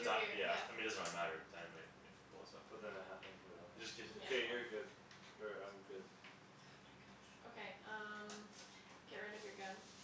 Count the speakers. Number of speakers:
3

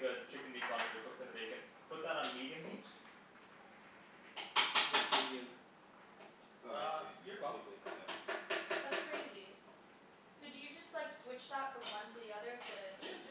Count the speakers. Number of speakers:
3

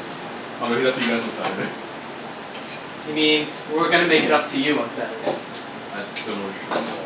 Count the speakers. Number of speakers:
2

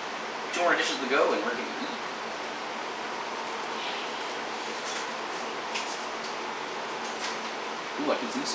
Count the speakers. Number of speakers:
1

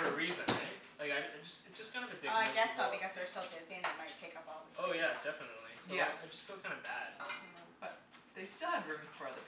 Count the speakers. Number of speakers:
3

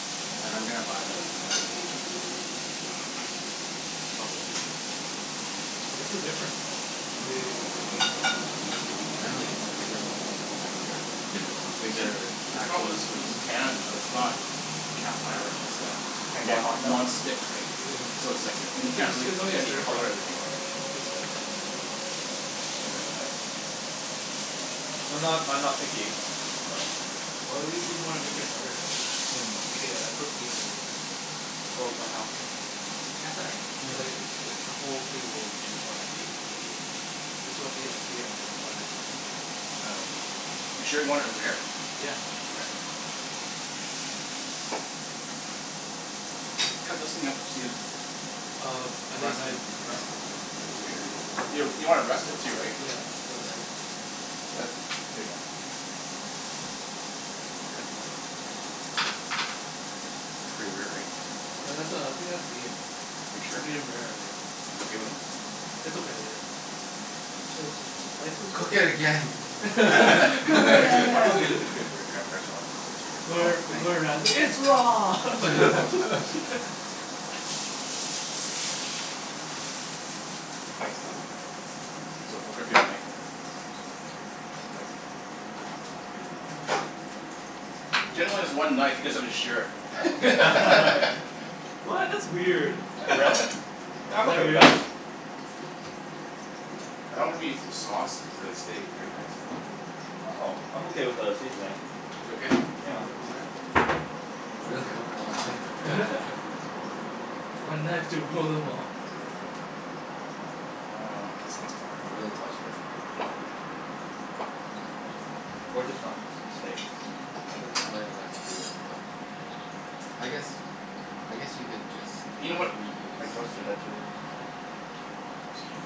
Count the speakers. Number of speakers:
4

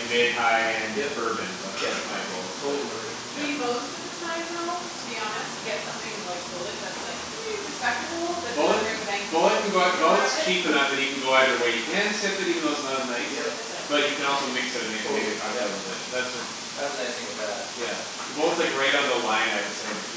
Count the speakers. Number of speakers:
3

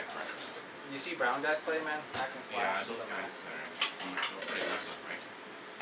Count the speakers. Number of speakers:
2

